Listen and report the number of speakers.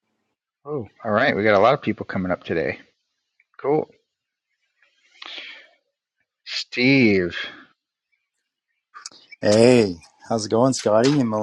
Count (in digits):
2